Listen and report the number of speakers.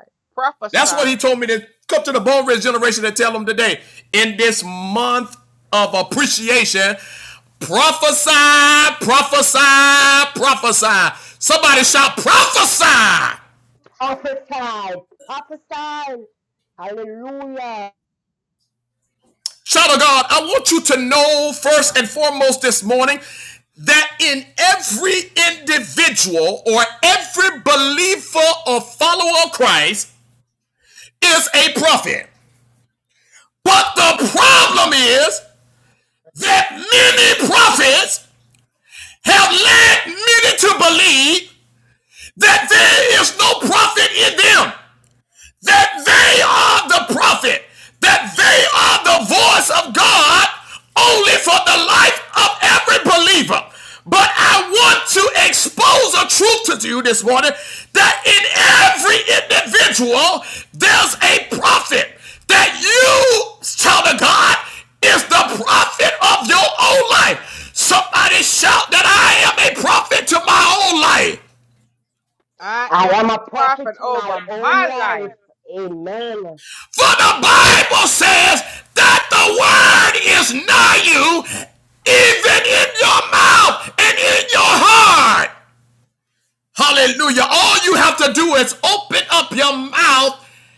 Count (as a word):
three